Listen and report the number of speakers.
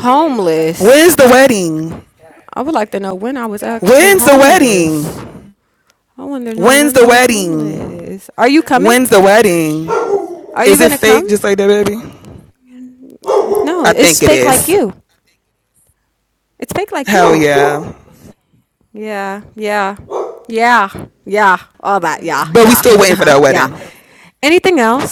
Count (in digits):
2